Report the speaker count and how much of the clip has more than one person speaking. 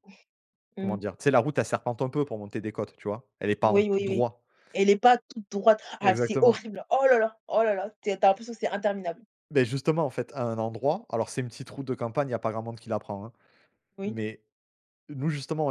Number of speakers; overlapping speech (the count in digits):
2, about 9%